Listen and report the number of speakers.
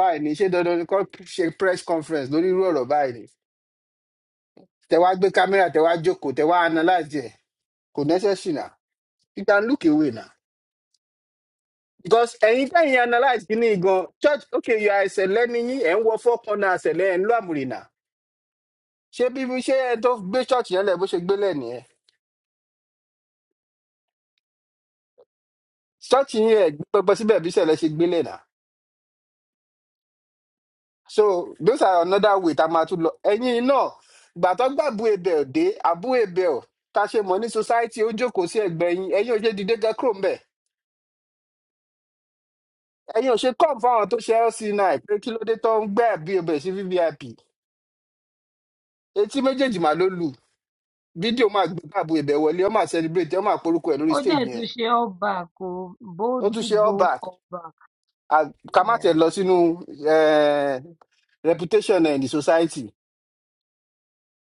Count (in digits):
2